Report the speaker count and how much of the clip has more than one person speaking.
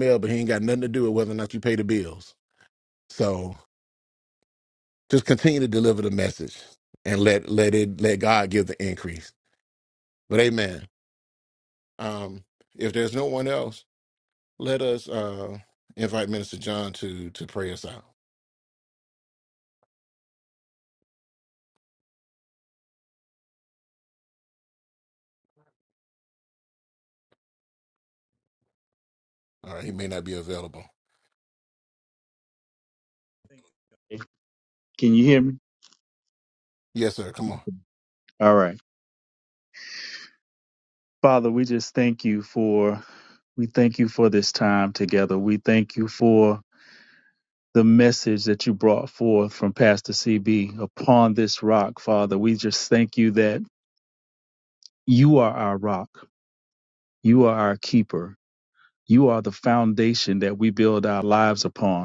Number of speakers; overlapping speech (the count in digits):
2, no overlap